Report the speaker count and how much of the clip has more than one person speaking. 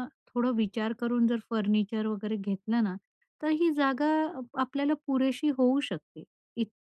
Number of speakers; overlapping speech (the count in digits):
1, no overlap